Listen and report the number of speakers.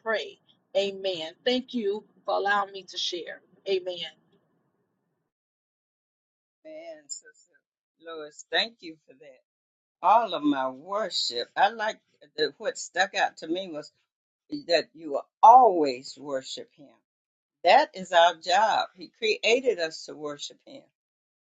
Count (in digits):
2